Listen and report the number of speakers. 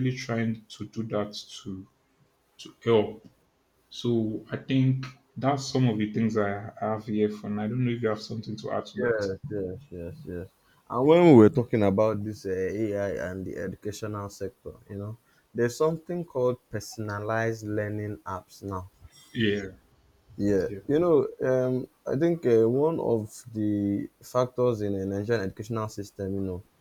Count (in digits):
2